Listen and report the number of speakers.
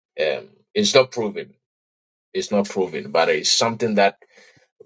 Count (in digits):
1